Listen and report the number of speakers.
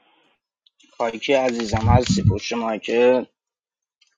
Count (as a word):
one